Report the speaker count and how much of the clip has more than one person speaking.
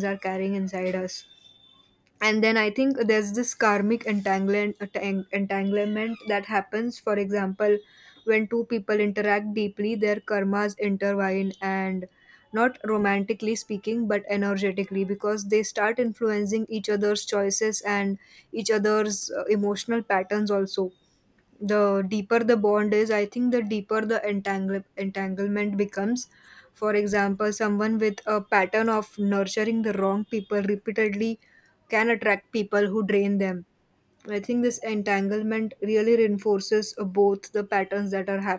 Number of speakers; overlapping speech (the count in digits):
1, no overlap